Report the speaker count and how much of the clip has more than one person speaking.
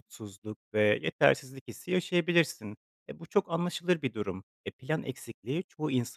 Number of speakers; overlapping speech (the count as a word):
one, no overlap